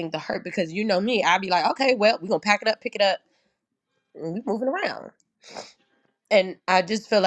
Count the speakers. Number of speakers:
one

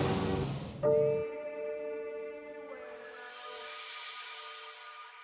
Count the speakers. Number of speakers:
zero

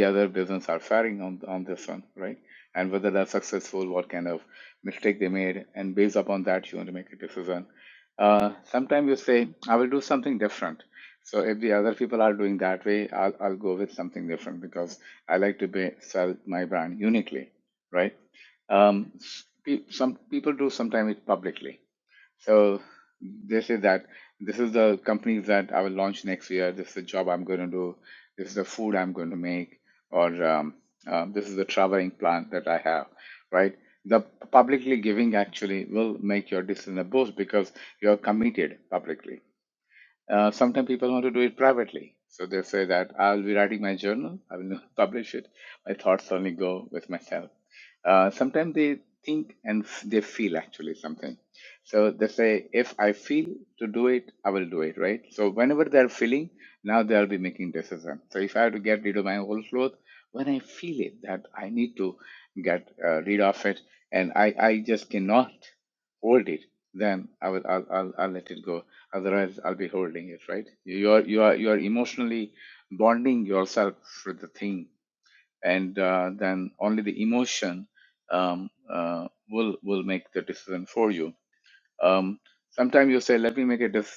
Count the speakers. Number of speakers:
one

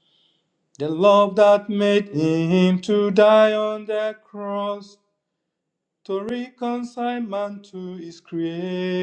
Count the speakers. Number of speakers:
one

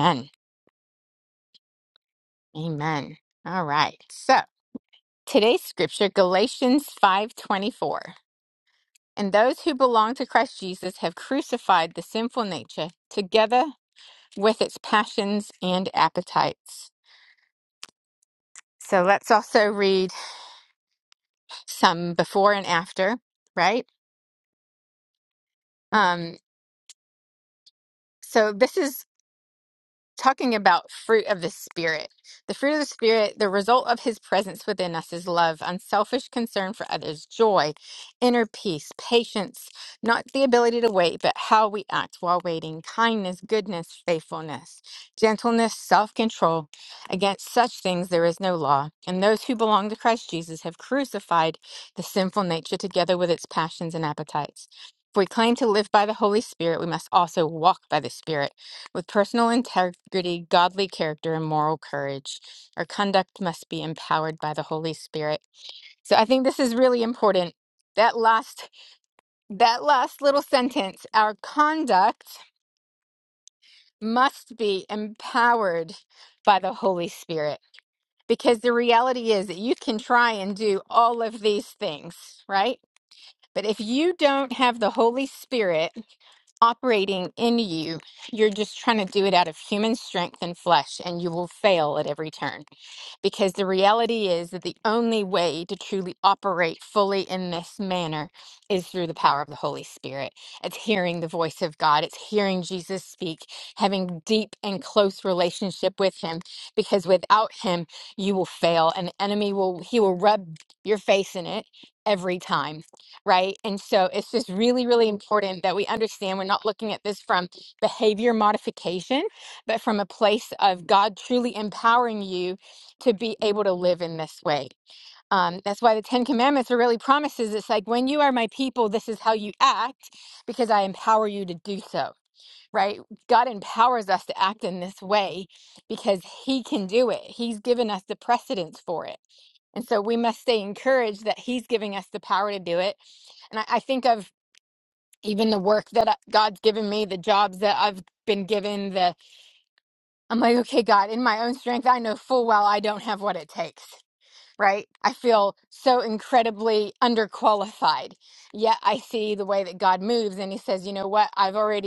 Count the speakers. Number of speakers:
one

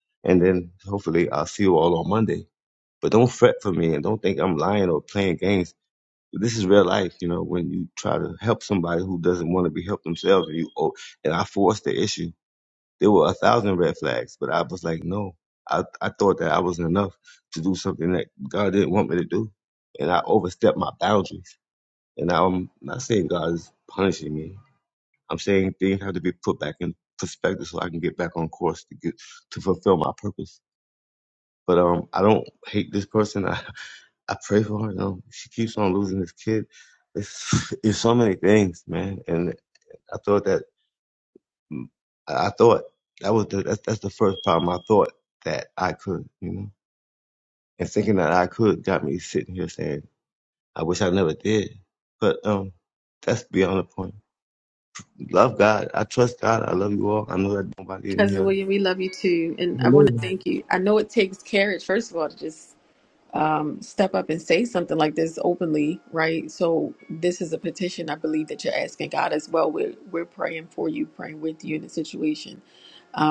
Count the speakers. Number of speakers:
two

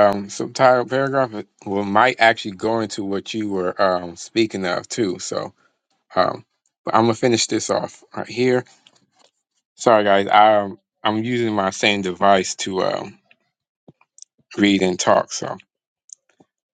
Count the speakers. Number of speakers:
one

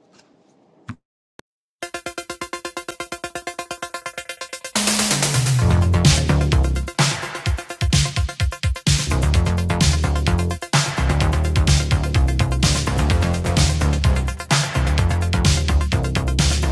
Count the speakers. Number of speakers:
zero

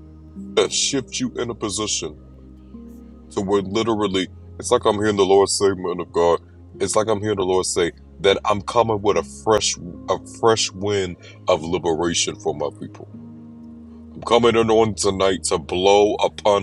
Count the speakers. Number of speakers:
one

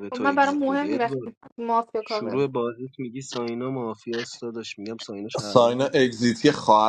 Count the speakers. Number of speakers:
three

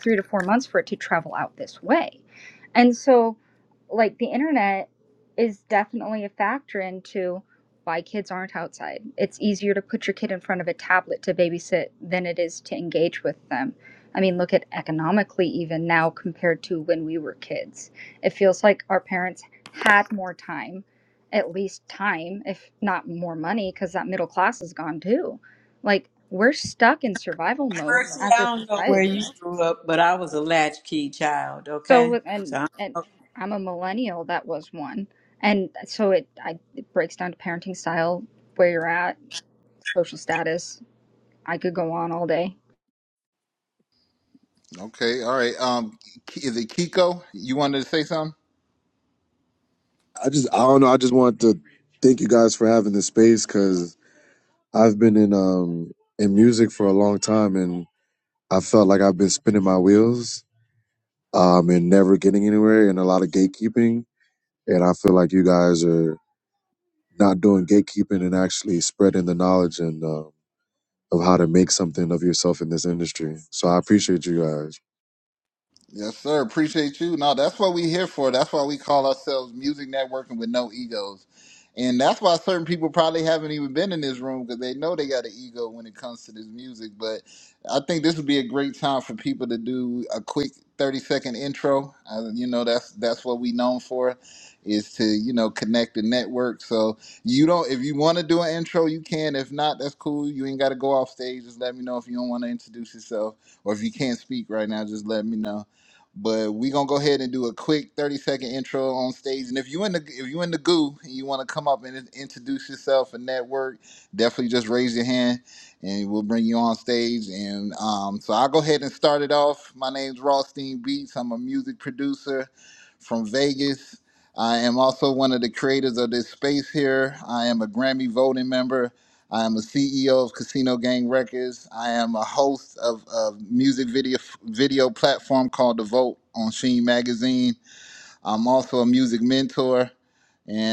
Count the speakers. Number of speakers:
four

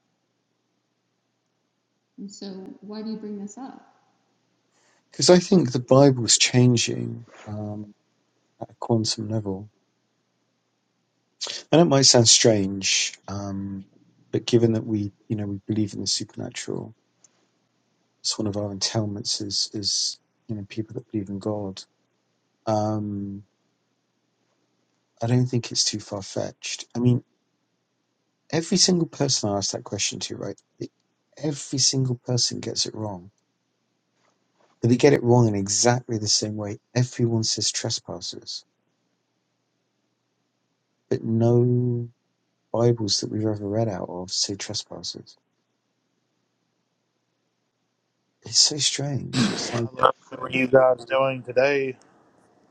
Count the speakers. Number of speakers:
three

